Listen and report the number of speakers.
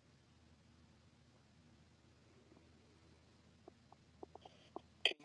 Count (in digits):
0